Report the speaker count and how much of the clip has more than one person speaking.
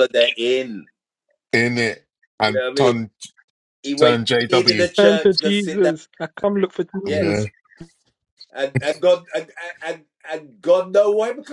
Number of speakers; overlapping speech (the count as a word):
three, about 19%